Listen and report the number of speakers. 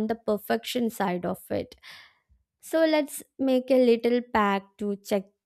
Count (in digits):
1